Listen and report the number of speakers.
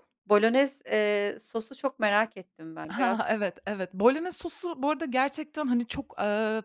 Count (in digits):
2